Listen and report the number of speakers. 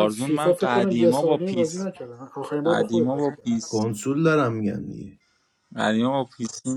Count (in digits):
3